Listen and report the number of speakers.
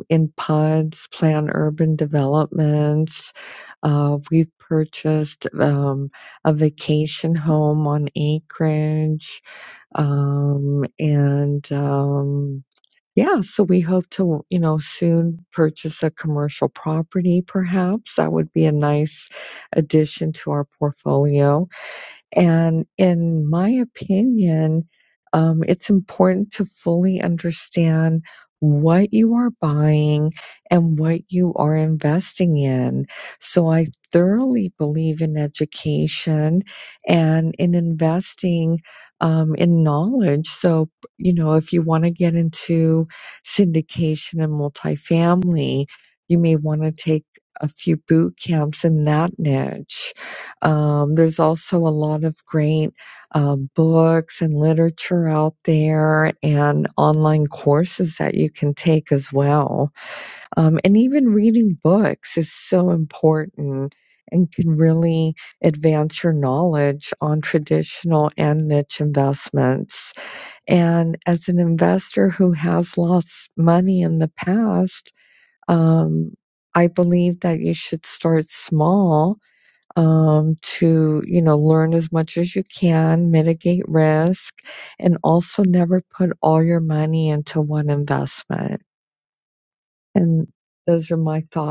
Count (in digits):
1